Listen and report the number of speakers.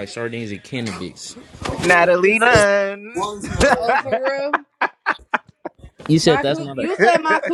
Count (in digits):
3